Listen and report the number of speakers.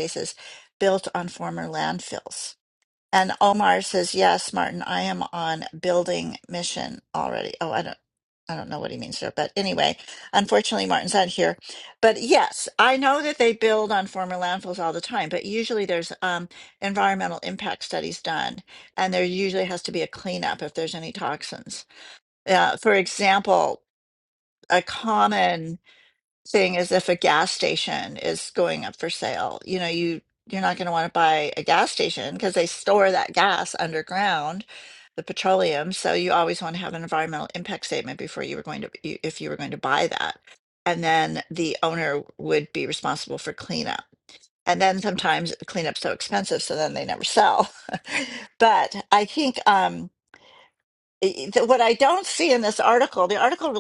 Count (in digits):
1